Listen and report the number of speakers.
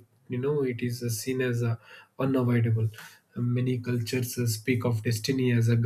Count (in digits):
1